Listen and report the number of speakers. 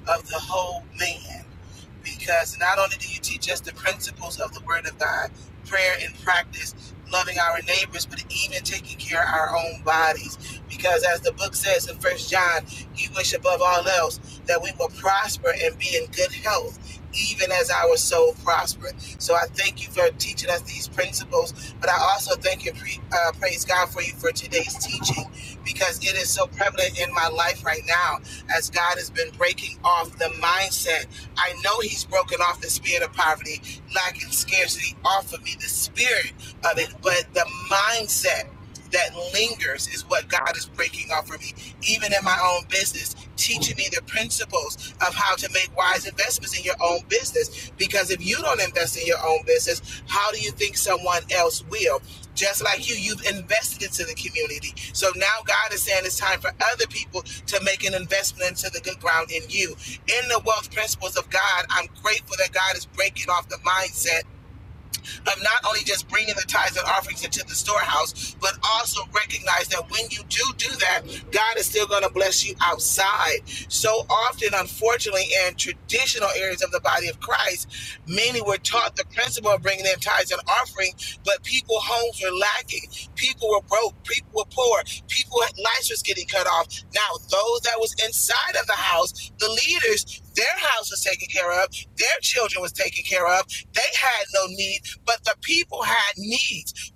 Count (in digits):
1